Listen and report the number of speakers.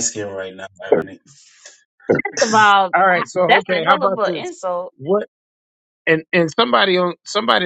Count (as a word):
three